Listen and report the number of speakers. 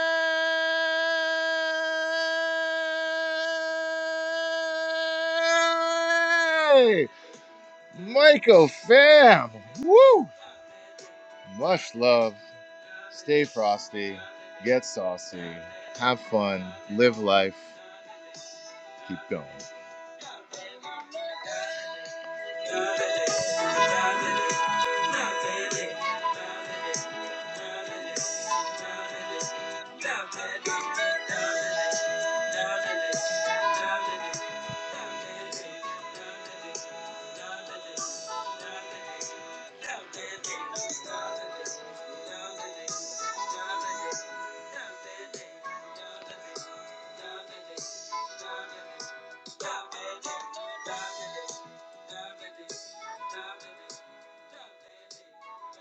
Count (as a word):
one